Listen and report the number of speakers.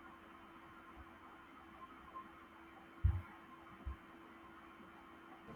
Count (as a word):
zero